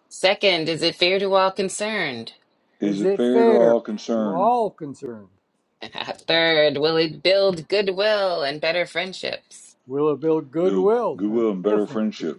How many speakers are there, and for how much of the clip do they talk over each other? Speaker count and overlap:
3, about 21%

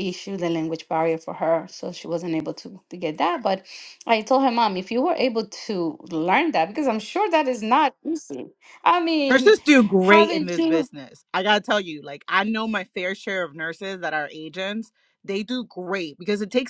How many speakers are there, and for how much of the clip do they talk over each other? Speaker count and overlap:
2, about 7%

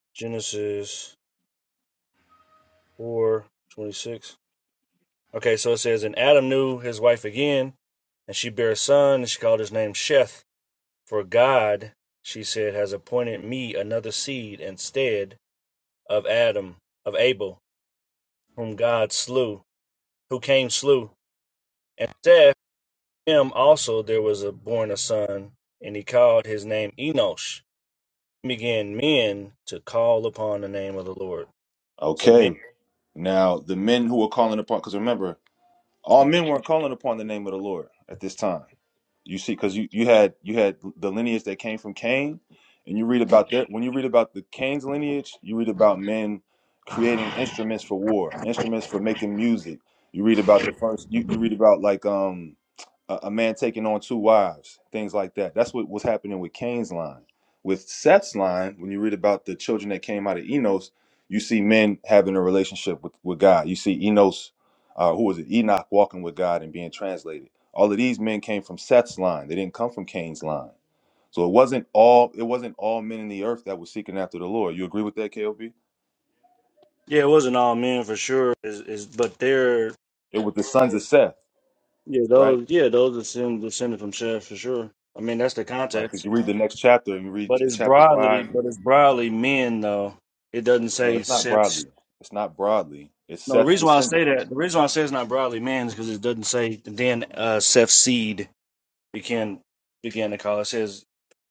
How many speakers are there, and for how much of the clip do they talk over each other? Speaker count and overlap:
2, about 3%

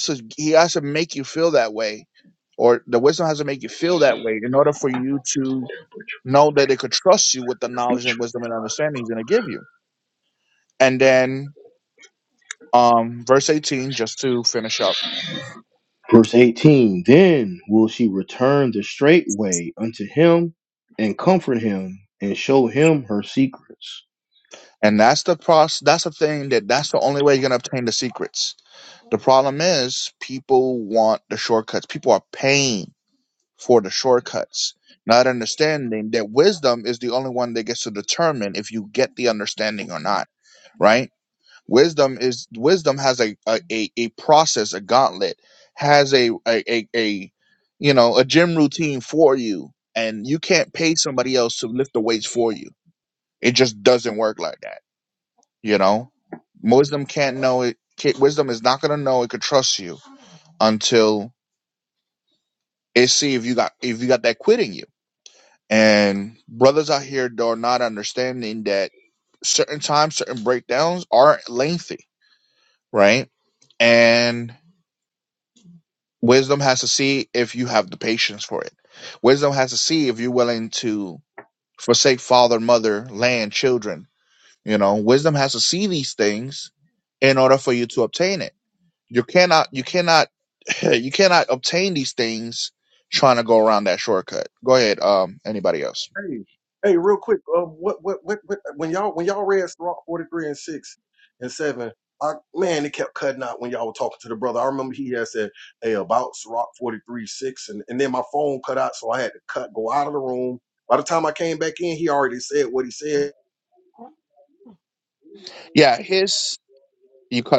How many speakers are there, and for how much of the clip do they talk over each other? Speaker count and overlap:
3, no overlap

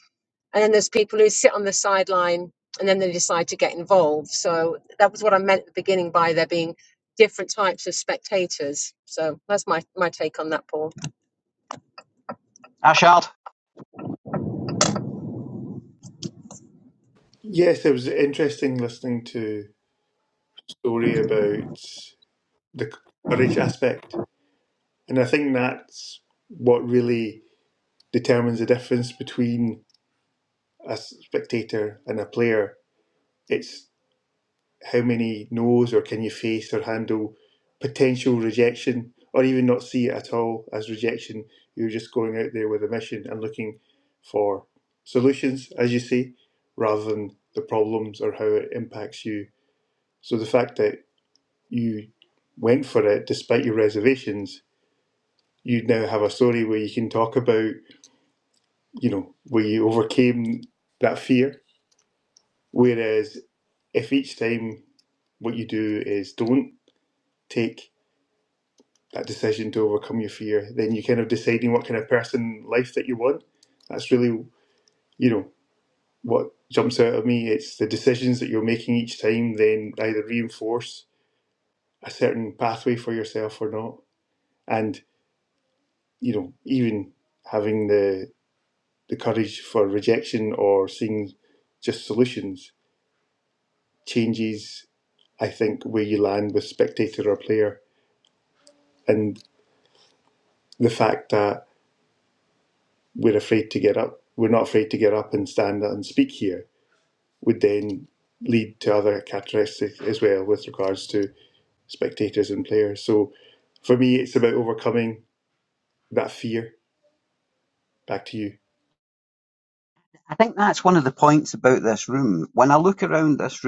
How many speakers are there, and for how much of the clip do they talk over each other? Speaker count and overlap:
3, no overlap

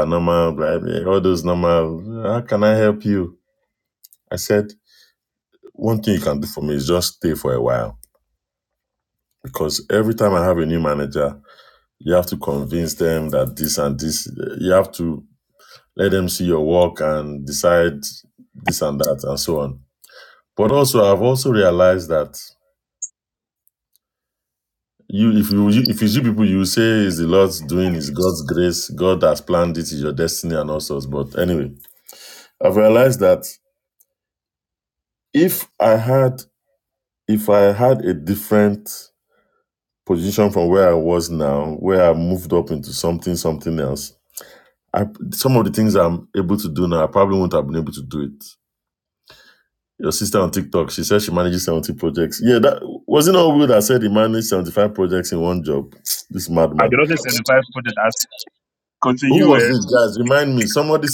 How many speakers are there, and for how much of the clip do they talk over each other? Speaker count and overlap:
2, about 1%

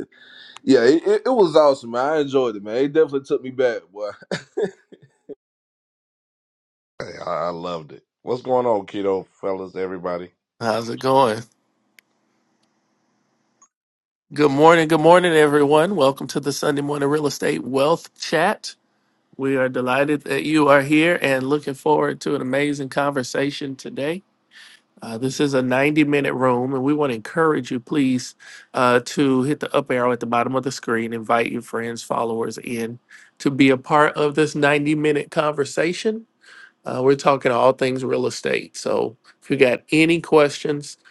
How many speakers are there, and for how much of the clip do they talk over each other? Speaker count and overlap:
3, no overlap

